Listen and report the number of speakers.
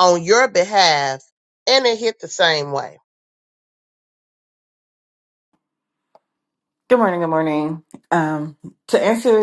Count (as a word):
two